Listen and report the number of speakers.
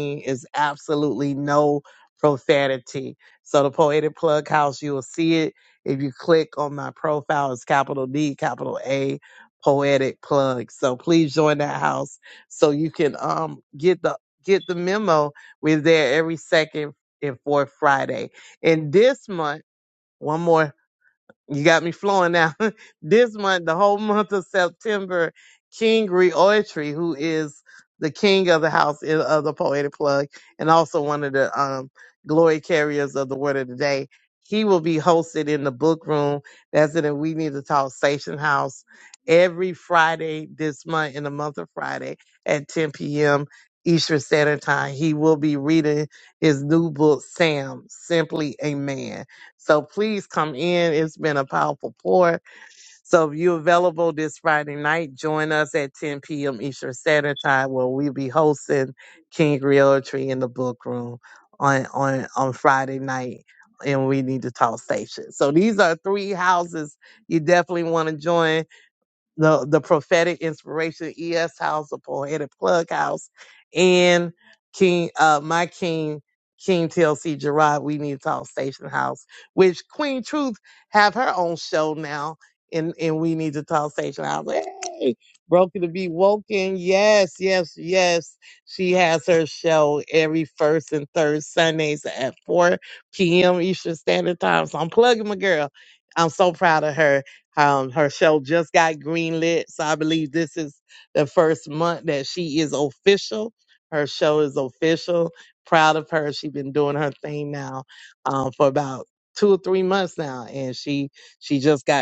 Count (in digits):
1